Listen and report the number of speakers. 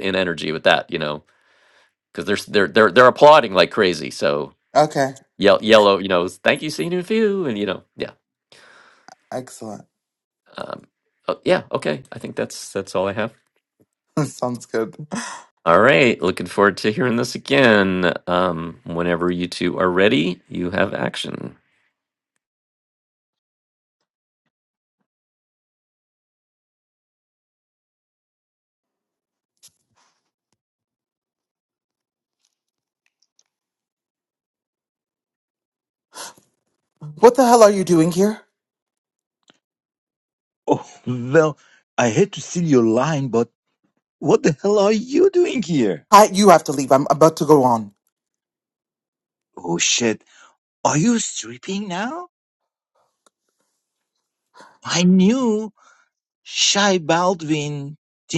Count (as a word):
three